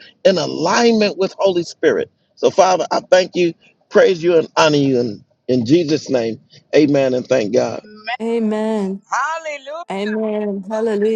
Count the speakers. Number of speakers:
3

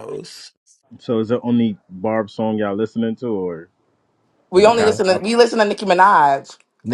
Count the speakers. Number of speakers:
3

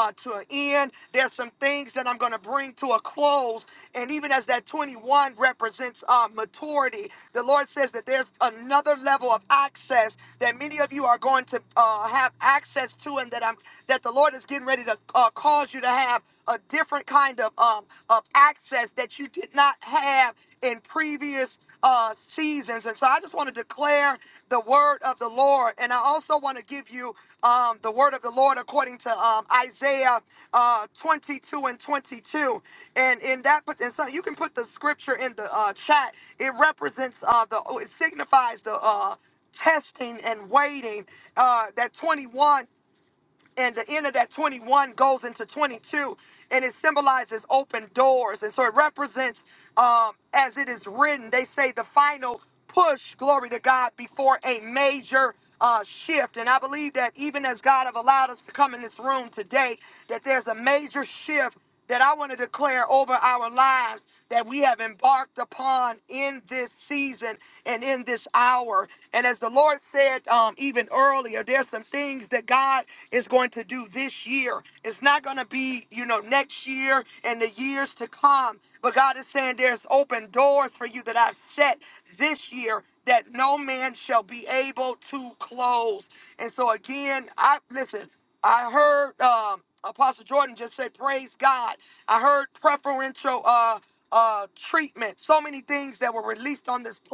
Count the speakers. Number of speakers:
1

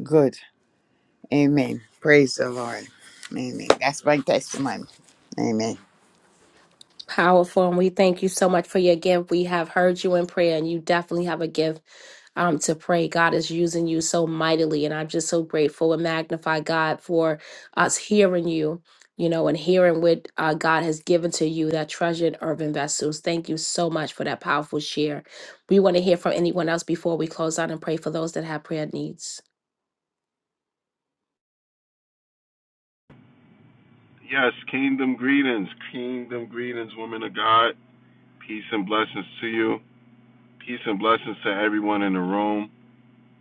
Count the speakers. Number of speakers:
3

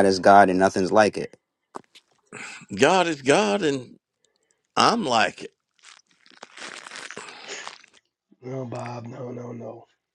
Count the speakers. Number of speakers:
3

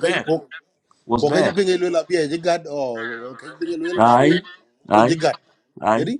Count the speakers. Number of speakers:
2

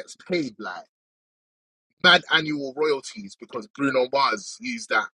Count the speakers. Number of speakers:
1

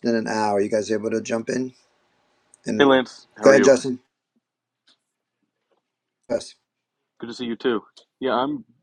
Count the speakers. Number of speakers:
2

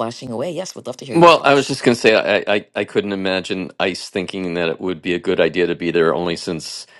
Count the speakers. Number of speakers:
2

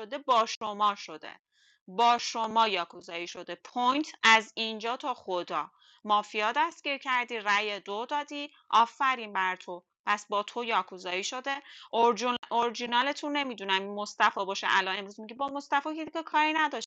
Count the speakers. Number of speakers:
1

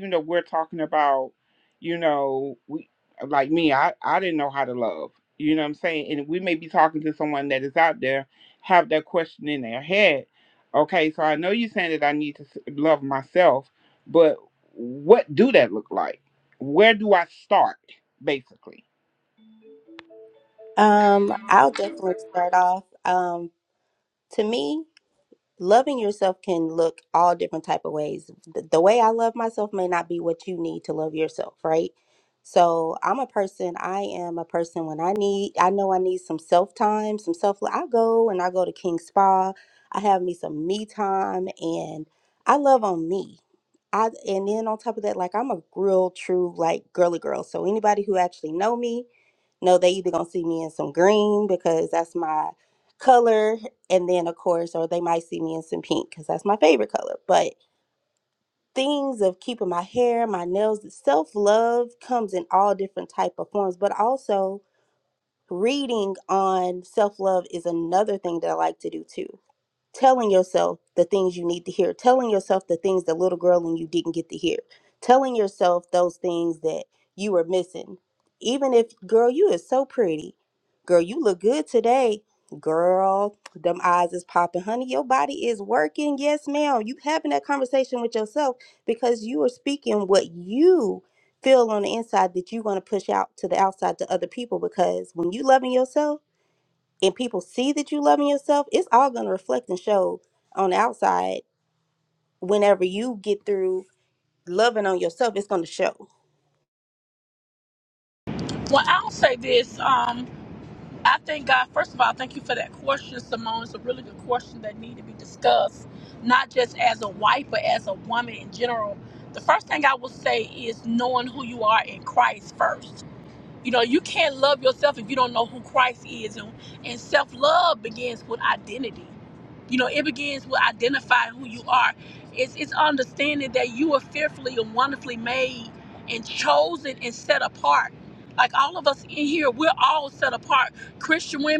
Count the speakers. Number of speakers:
3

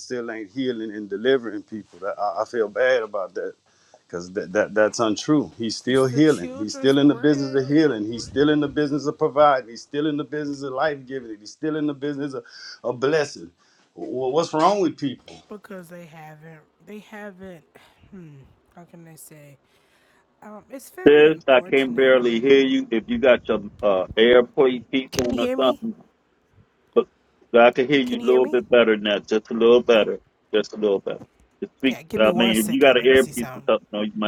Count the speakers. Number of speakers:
3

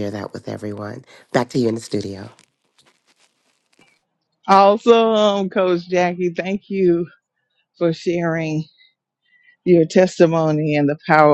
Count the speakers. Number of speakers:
2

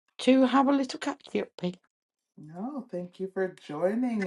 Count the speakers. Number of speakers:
2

